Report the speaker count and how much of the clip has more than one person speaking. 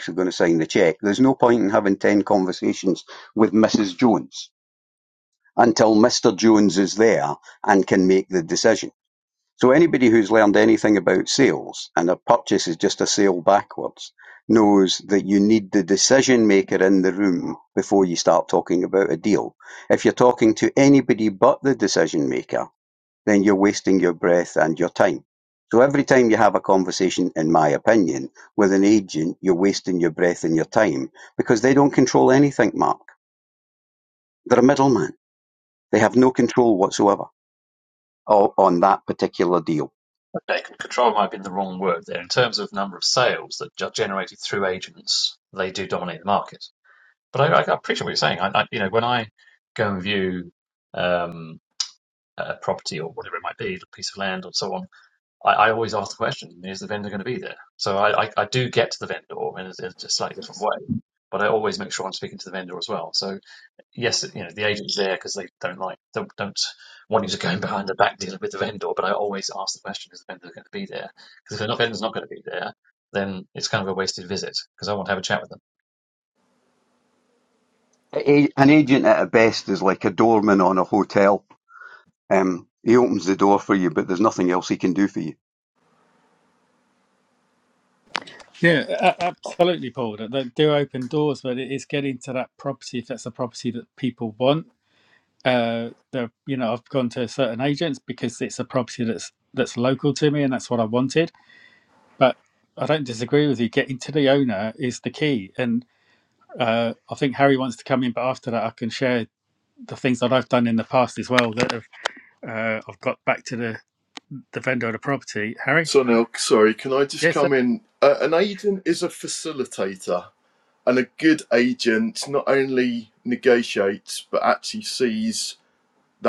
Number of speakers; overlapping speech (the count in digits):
4, under 1%